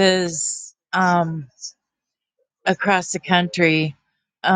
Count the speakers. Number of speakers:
1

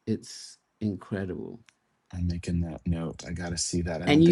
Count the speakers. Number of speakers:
2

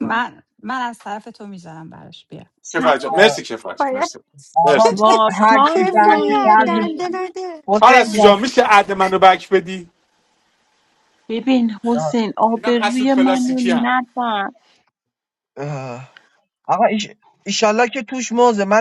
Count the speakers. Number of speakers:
5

